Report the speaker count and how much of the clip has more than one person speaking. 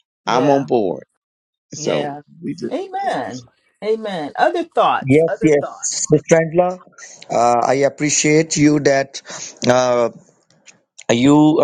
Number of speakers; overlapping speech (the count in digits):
3, about 13%